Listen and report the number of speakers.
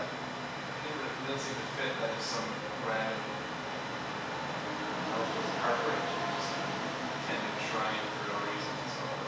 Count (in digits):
1